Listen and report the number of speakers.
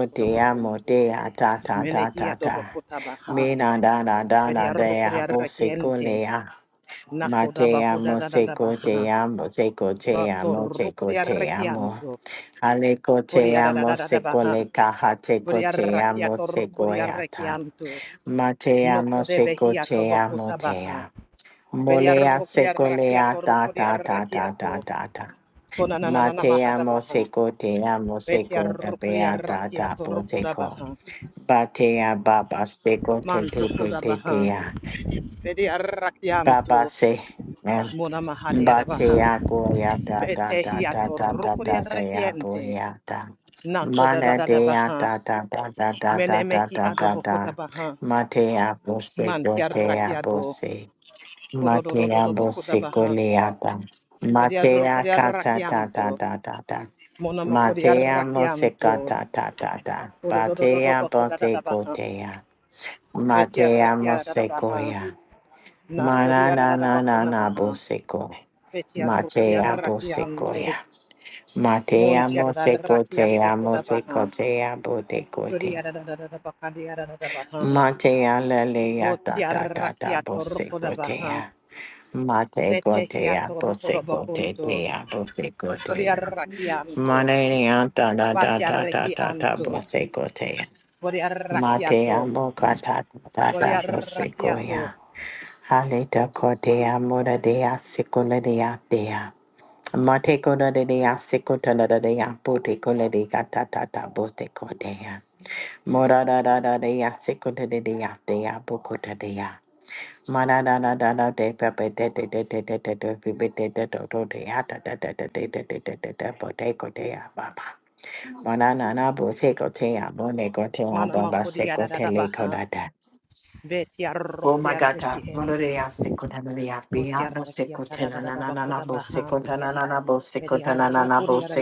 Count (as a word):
two